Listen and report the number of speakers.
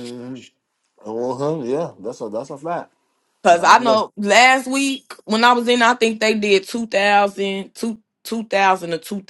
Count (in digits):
2